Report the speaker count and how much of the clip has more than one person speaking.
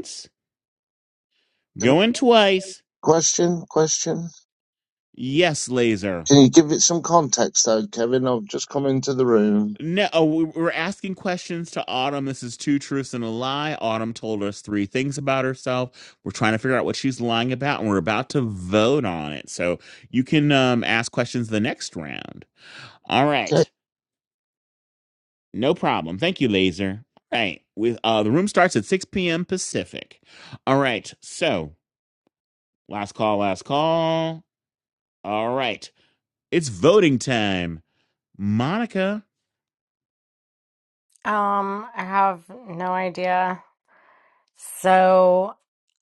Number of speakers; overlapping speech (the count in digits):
3, about 1%